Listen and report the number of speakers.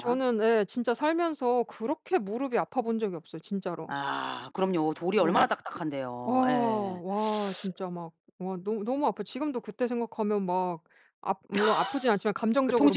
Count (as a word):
two